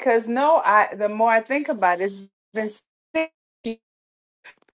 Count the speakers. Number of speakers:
1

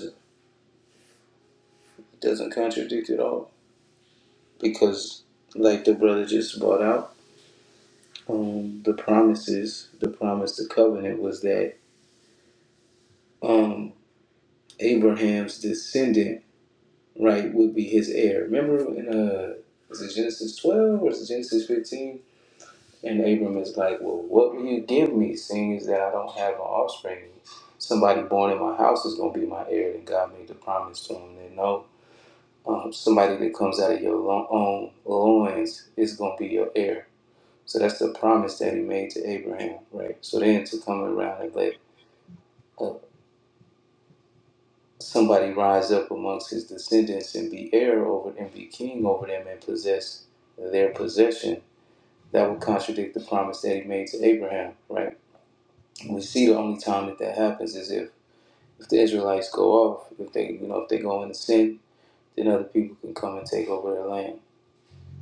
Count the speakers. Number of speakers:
1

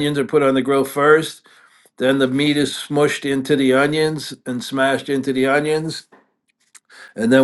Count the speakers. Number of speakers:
1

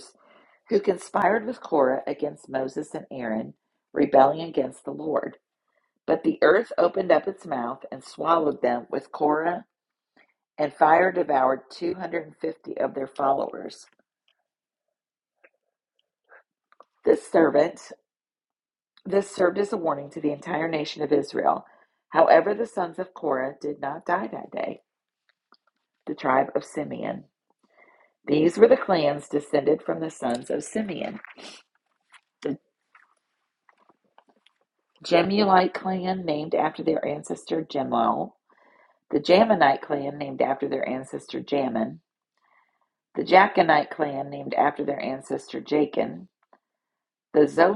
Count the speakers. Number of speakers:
1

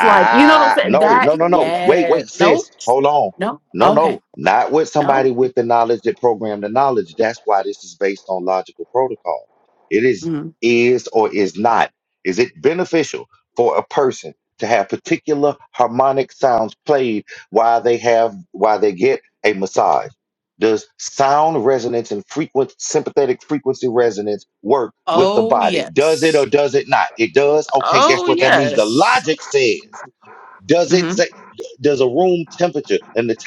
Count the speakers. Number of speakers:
2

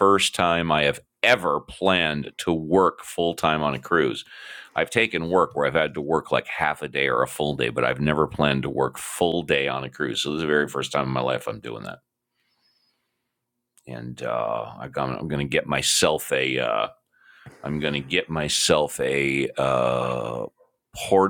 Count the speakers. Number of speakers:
1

